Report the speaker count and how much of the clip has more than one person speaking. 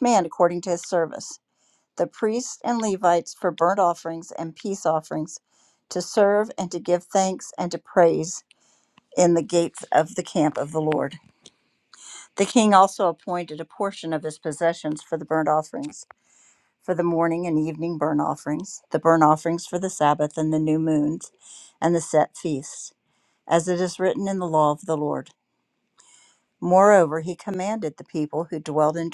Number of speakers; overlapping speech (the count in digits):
1, no overlap